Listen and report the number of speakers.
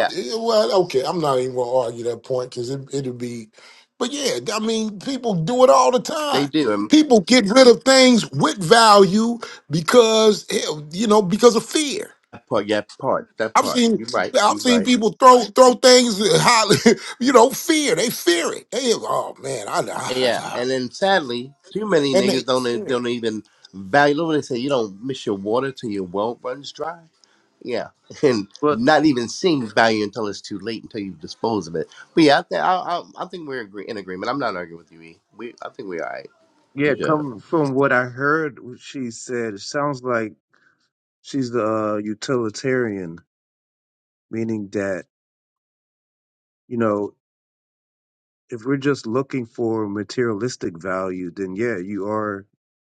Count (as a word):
three